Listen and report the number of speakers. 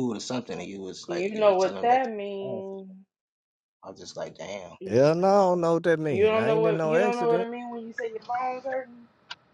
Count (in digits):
3